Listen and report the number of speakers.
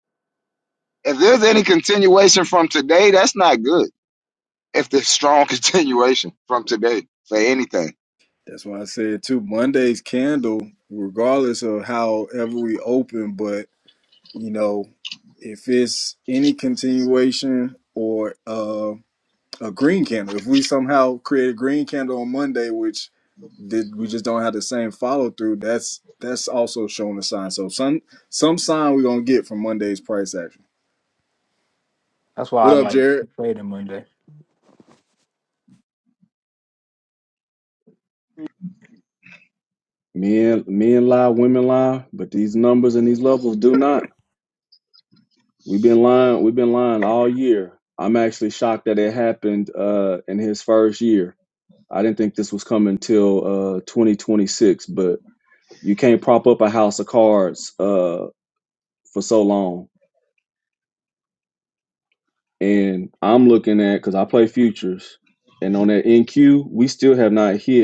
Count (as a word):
four